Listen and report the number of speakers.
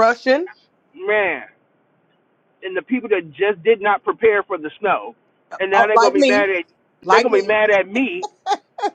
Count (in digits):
2